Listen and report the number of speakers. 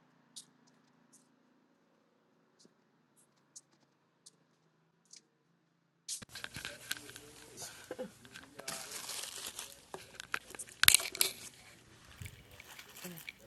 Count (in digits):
0